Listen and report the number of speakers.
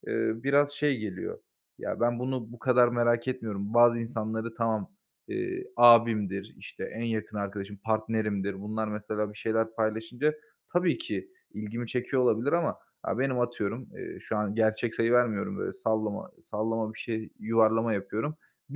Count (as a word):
one